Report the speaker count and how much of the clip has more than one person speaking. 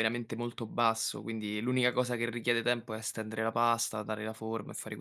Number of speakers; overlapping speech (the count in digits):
1, no overlap